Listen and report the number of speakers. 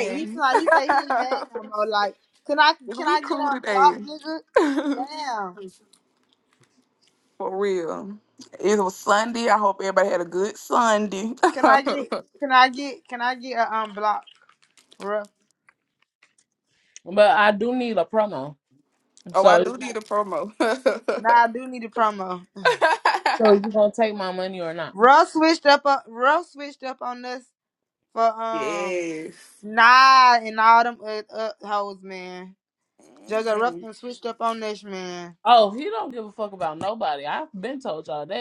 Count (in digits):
3